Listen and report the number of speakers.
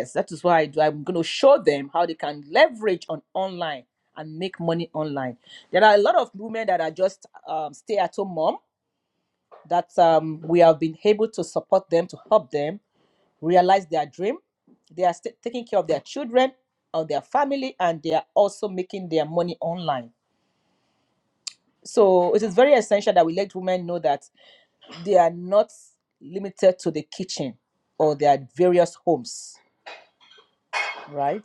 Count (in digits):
1